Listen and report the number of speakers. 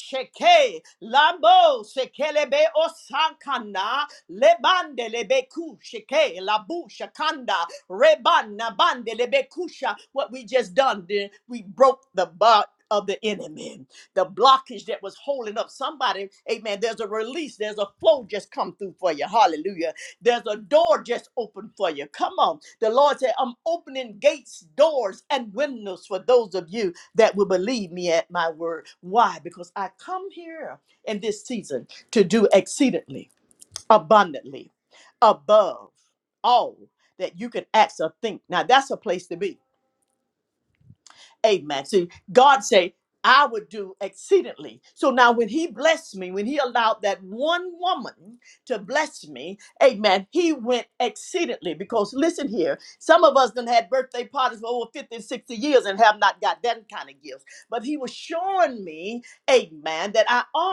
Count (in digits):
1